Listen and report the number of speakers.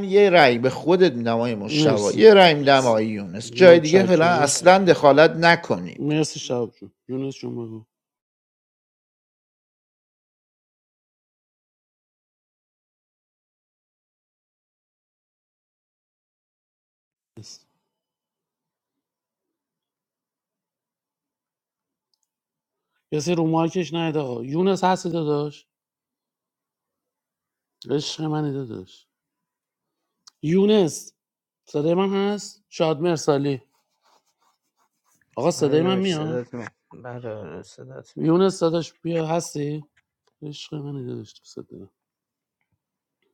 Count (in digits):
3